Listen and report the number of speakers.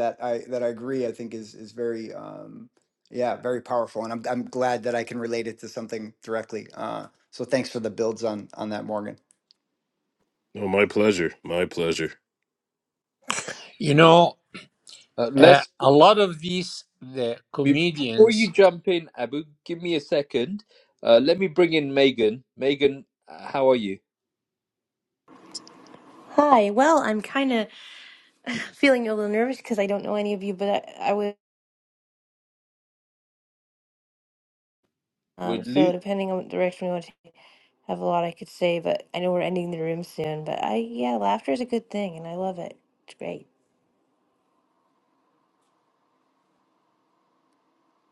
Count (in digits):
5